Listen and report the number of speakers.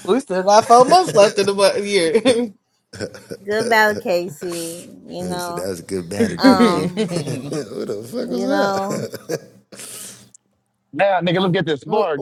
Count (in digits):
4